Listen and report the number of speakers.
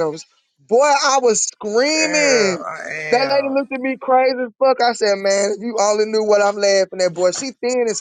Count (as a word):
two